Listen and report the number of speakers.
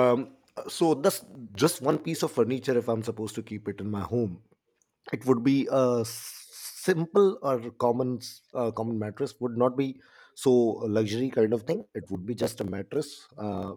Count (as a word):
one